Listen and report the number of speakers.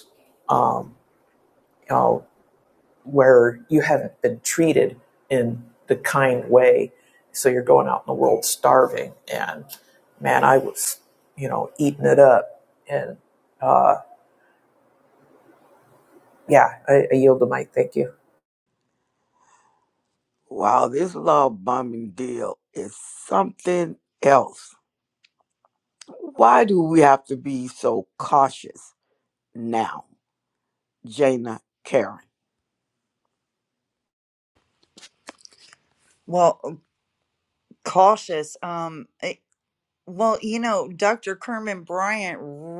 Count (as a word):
three